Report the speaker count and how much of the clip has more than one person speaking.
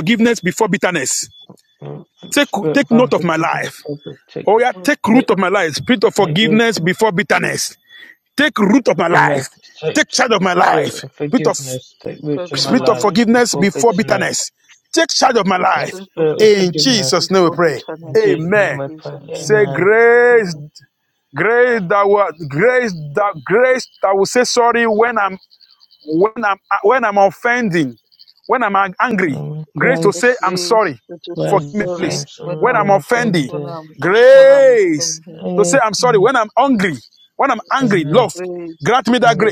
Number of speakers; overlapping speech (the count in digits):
3, about 41%